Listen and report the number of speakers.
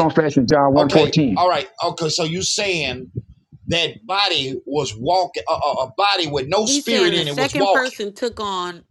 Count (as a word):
three